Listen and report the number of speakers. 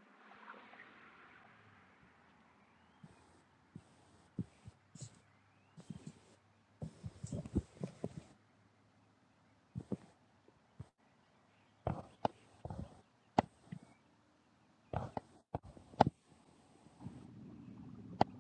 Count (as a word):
zero